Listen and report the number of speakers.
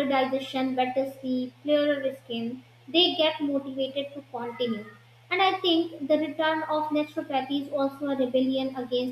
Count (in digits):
1